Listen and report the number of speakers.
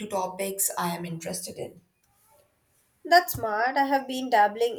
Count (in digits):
2